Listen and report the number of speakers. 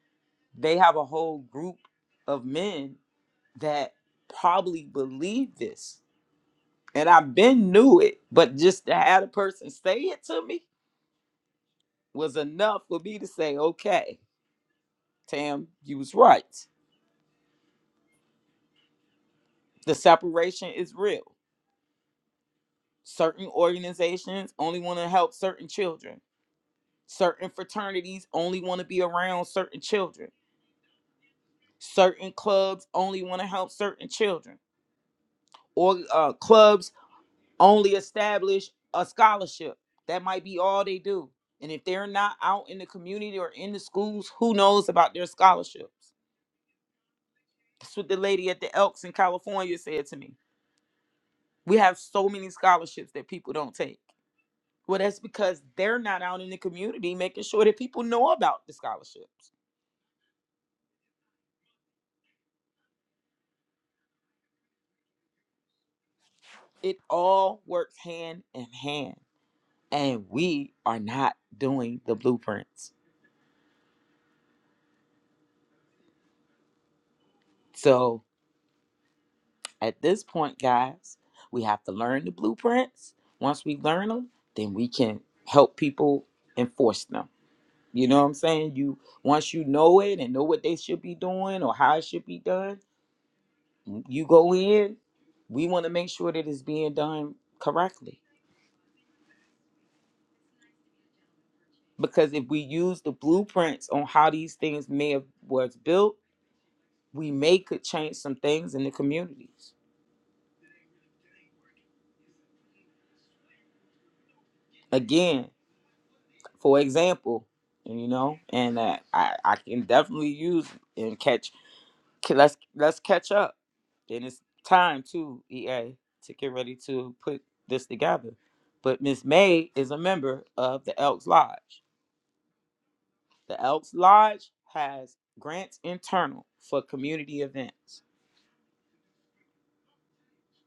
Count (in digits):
1